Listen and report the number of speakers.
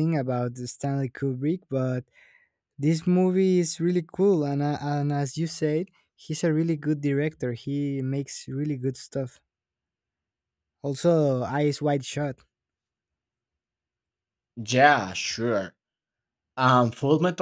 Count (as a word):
two